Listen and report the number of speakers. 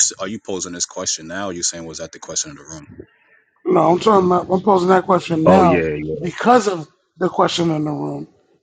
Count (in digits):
2